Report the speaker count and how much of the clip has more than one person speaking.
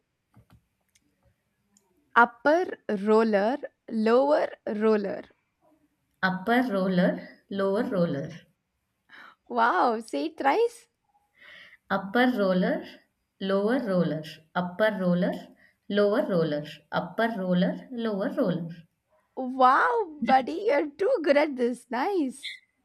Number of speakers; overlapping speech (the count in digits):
2, no overlap